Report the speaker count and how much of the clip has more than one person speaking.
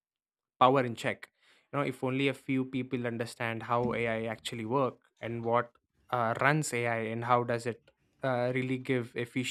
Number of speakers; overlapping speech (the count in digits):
1, no overlap